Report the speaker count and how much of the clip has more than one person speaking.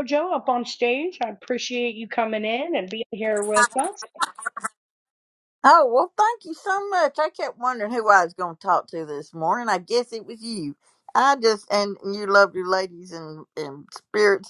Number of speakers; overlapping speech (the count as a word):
two, no overlap